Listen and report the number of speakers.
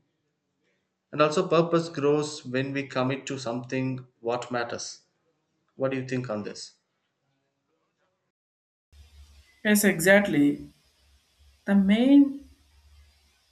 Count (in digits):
2